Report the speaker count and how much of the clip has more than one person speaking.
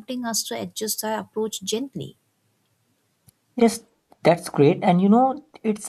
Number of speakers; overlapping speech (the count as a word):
two, no overlap